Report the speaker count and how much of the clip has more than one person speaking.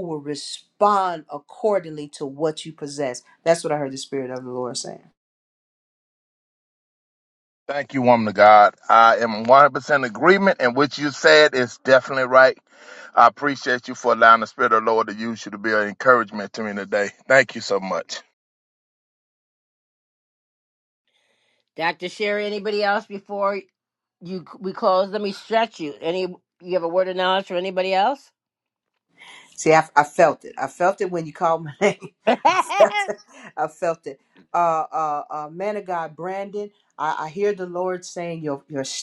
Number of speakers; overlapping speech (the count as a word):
three, no overlap